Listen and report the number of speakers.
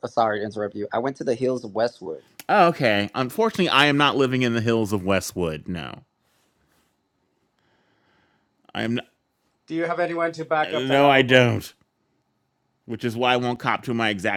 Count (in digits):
3